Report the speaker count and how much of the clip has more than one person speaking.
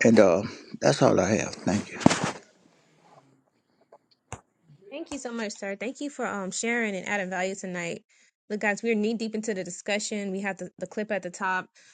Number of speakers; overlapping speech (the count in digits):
2, no overlap